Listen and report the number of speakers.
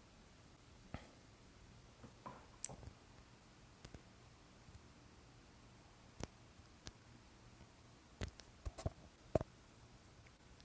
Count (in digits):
0